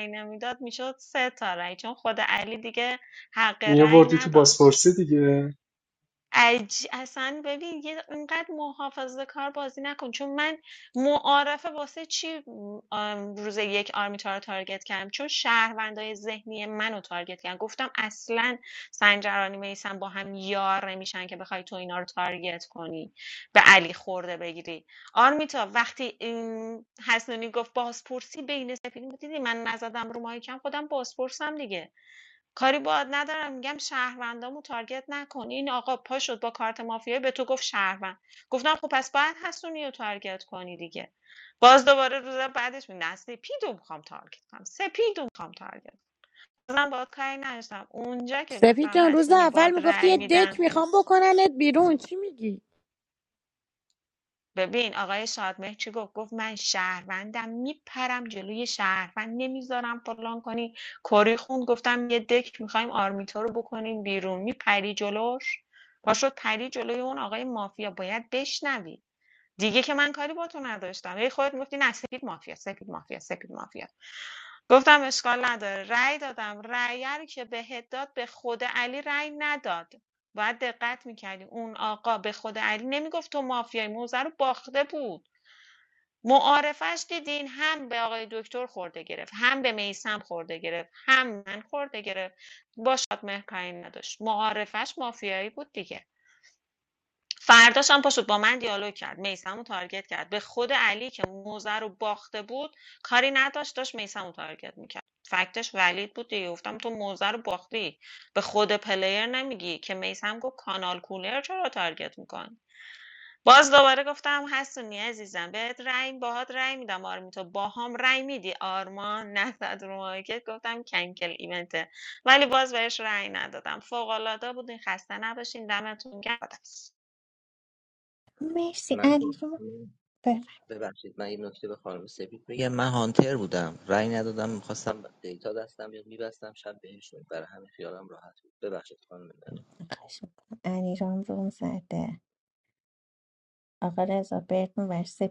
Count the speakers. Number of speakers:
five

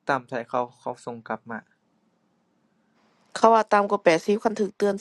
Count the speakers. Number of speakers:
two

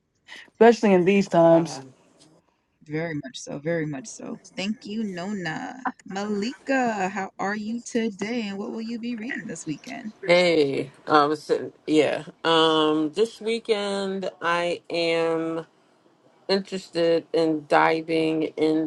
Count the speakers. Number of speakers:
three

